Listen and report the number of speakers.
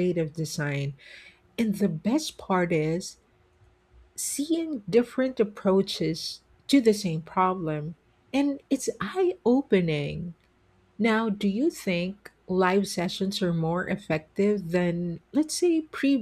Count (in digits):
1